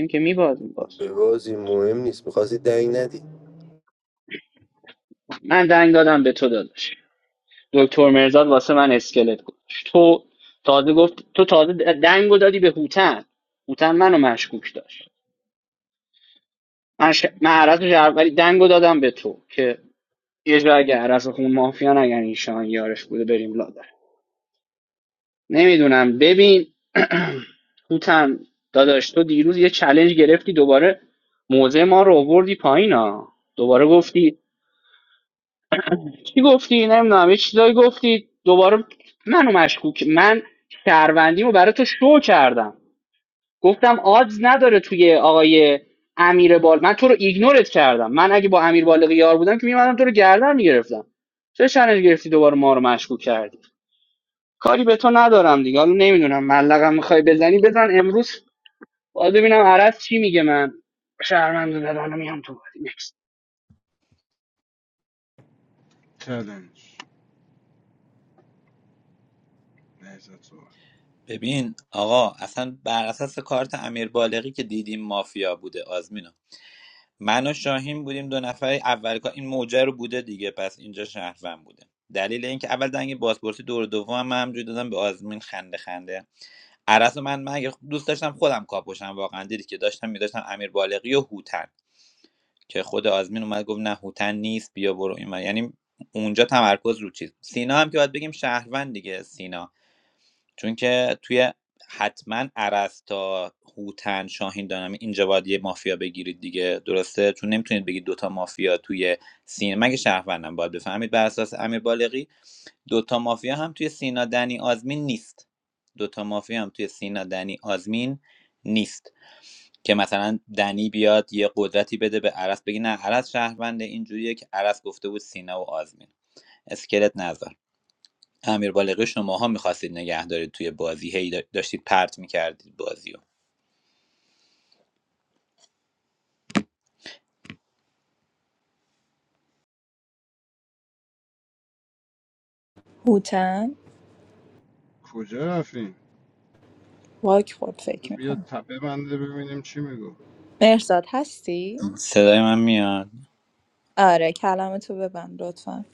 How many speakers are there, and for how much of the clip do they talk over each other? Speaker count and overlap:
5, under 1%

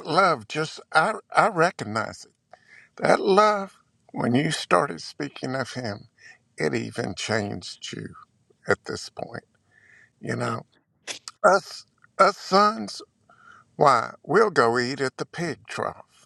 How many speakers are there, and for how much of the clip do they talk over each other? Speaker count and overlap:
1, no overlap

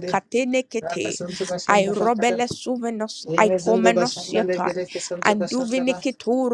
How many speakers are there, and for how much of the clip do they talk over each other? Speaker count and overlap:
2, about 47%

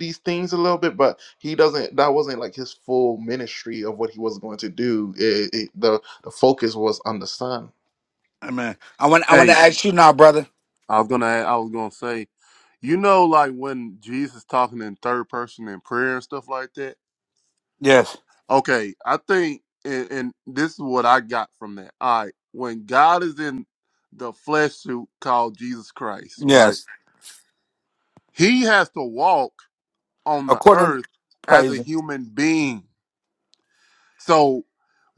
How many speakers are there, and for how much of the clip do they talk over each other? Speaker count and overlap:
3, about 4%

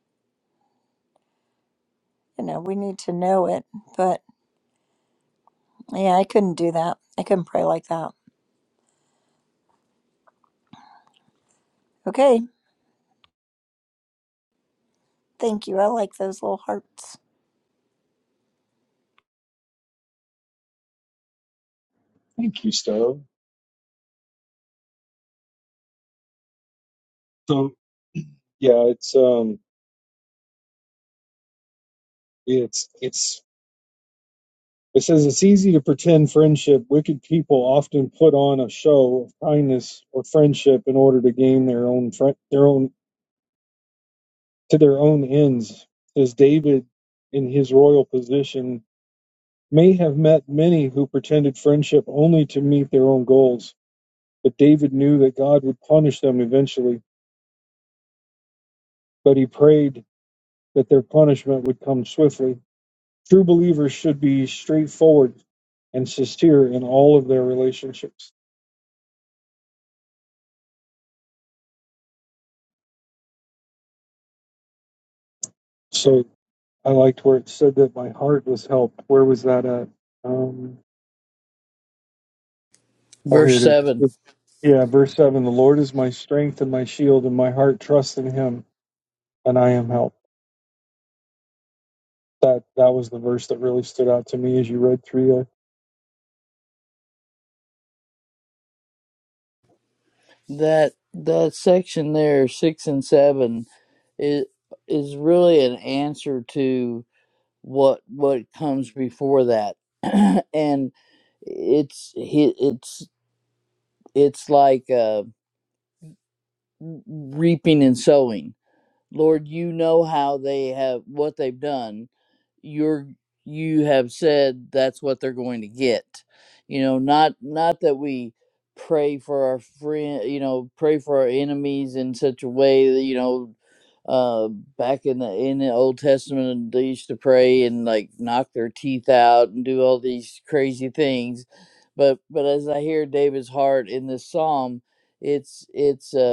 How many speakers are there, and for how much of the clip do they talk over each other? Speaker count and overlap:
3, under 1%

